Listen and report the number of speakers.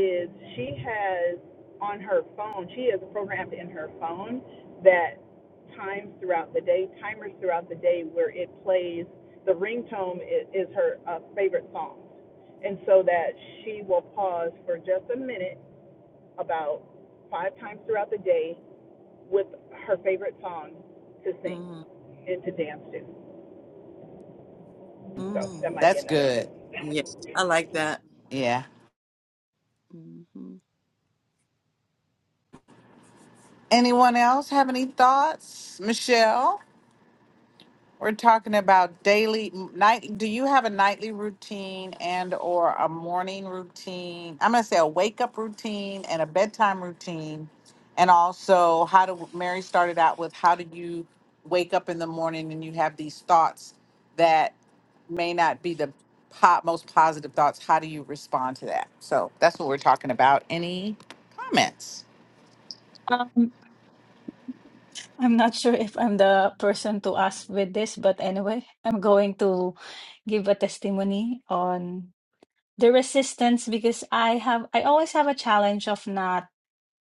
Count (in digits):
4